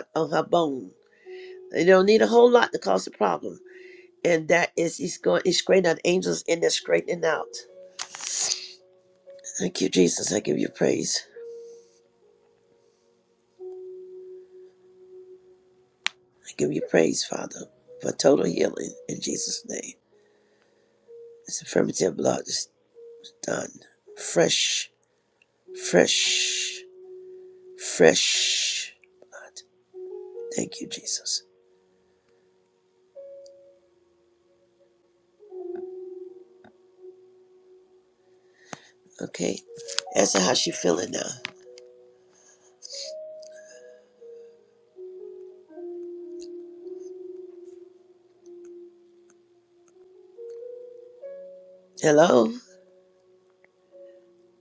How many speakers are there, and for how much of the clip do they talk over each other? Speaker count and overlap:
1, no overlap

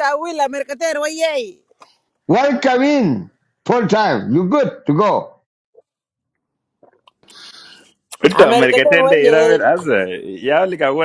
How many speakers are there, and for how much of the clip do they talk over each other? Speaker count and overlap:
3, about 13%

